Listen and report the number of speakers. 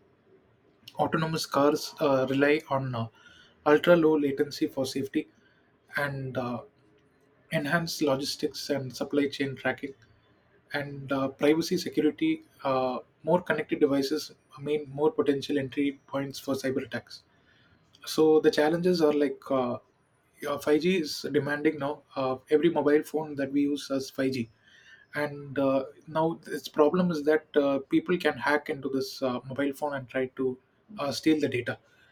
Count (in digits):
1